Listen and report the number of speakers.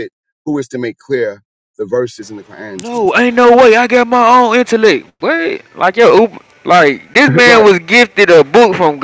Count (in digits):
2